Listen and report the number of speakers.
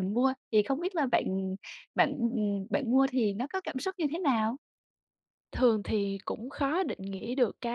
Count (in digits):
2